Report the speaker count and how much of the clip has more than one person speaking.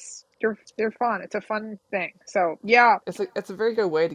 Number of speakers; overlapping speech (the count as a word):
two, no overlap